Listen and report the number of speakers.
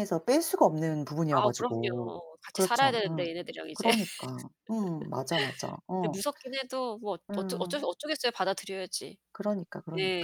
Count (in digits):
2